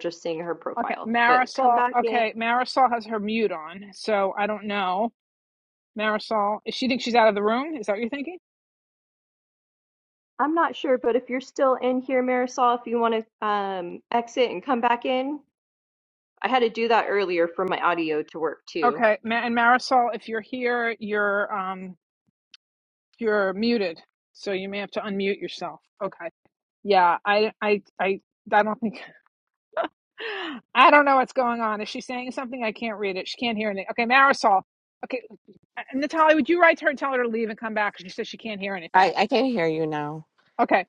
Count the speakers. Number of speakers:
three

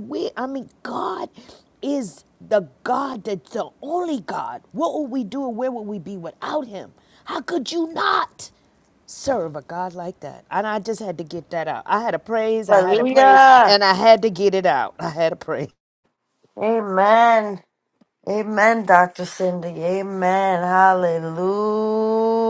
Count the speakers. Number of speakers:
two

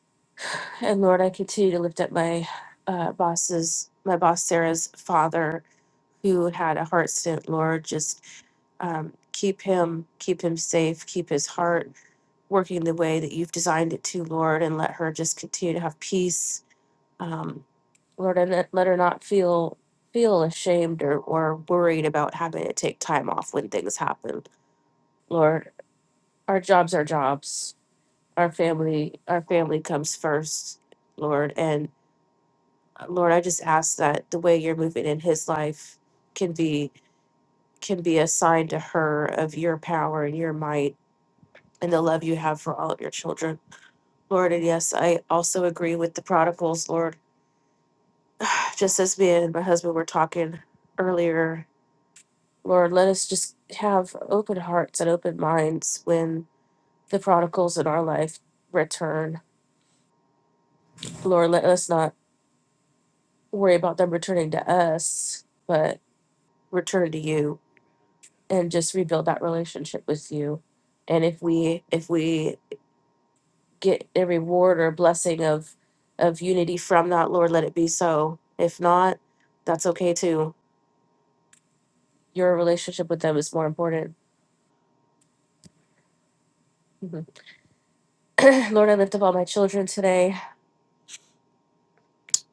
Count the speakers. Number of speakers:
one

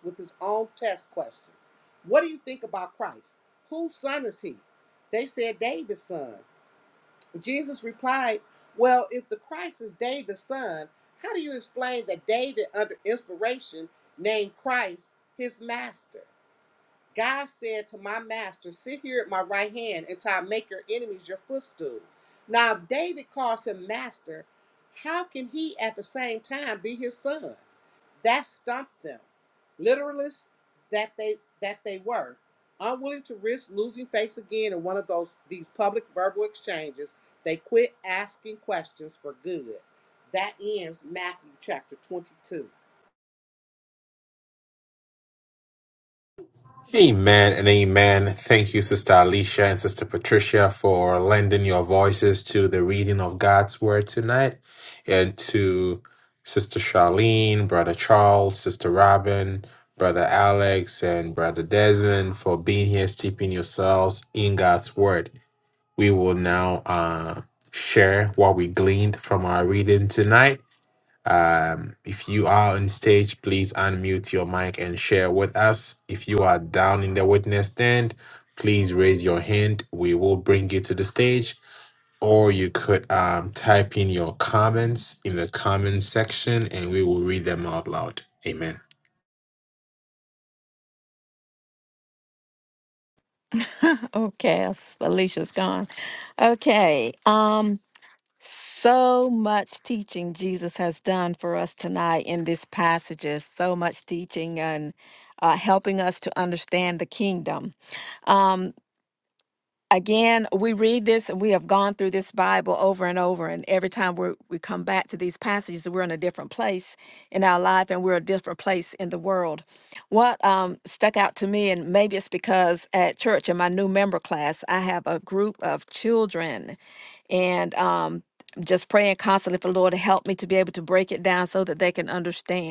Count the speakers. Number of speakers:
three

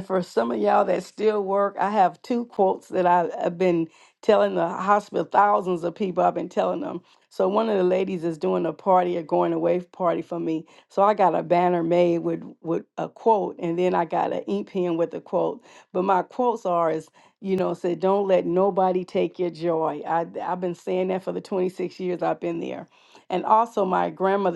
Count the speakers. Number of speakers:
one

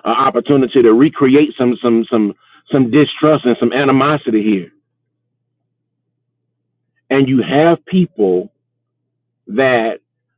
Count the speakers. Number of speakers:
one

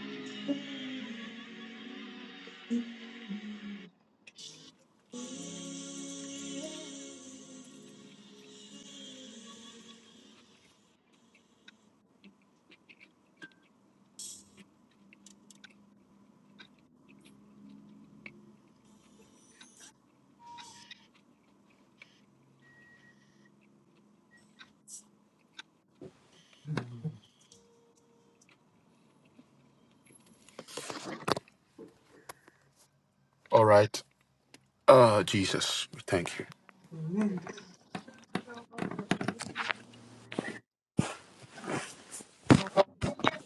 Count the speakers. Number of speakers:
one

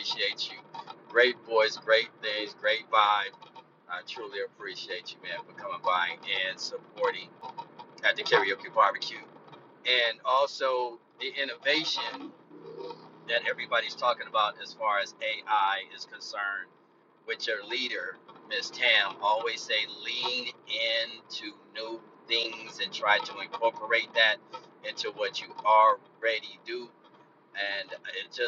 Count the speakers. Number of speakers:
one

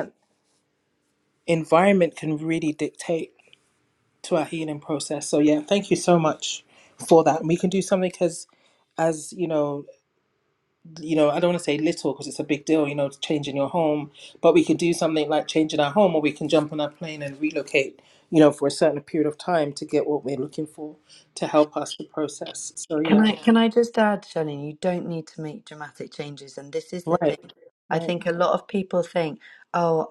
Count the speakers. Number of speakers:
two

